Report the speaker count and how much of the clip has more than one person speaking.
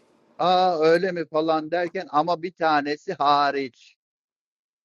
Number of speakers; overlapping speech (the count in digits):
1, no overlap